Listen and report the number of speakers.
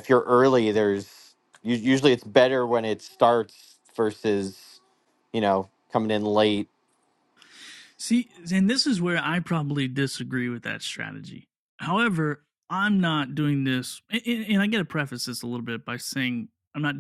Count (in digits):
2